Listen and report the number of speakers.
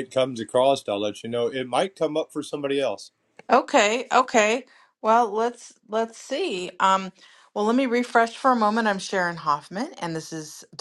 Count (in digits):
2